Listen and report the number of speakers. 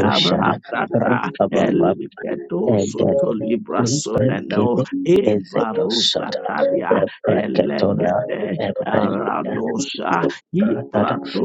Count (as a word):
two